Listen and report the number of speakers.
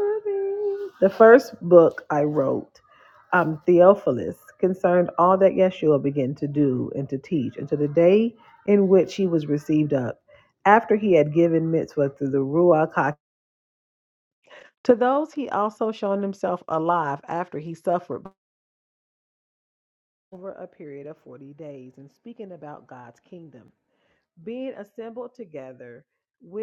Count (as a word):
one